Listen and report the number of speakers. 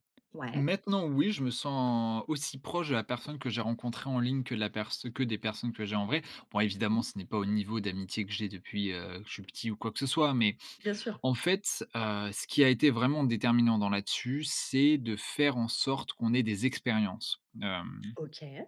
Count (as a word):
two